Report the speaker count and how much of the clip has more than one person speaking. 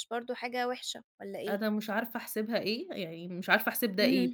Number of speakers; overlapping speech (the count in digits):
2, about 11%